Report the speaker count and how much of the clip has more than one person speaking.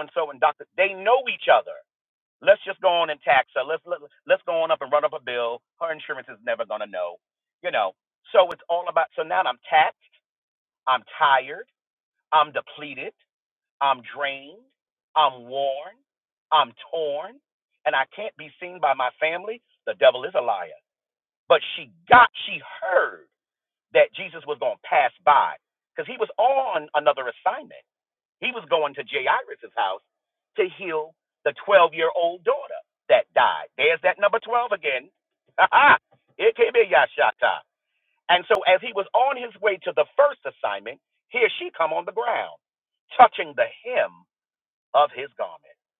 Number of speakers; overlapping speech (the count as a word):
one, no overlap